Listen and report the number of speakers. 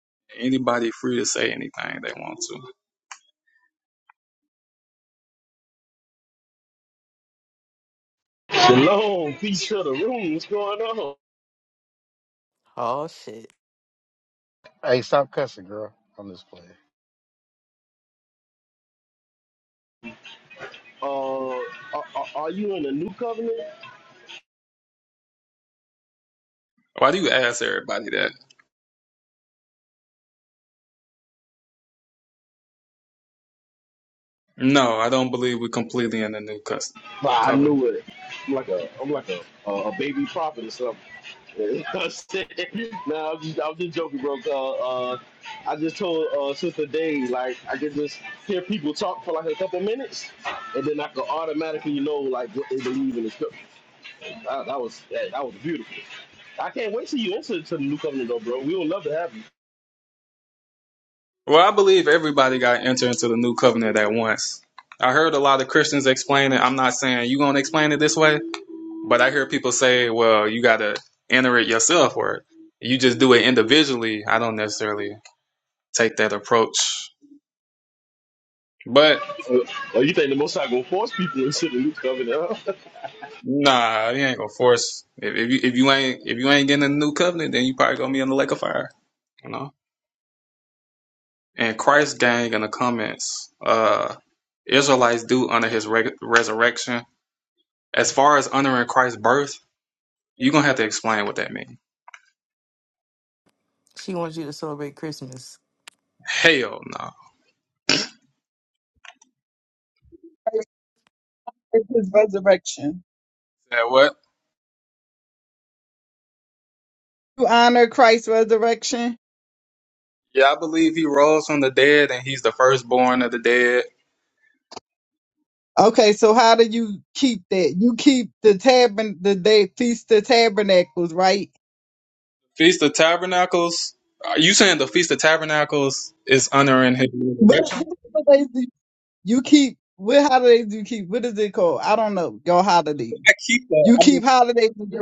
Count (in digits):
5